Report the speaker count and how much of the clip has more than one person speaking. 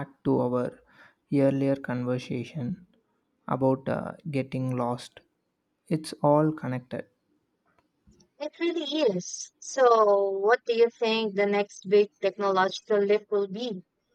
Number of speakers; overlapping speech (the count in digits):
2, no overlap